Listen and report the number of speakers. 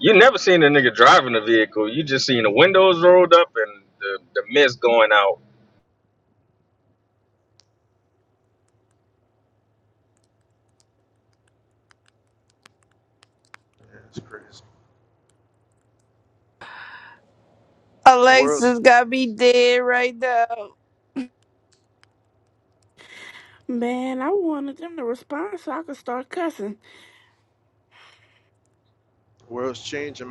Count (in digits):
4